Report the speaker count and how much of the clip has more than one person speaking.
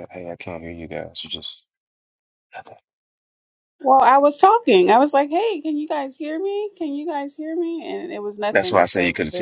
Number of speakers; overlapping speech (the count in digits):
2, about 10%